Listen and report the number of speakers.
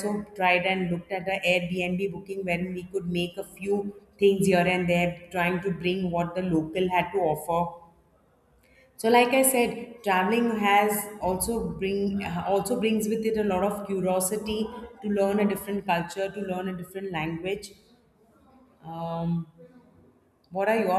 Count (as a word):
one